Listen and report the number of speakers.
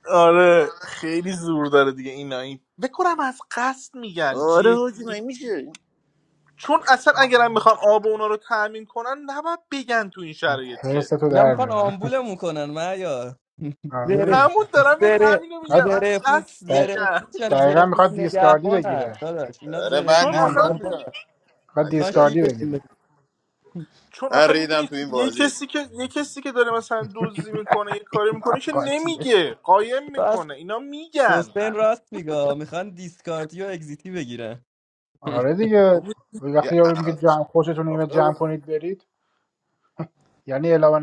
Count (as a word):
four